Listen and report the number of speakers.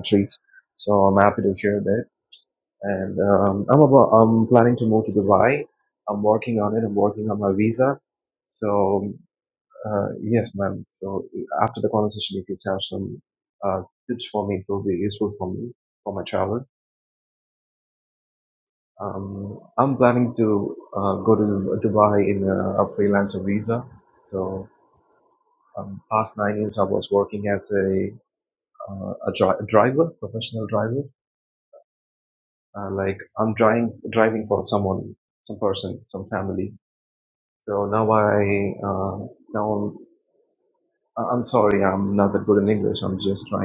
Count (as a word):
one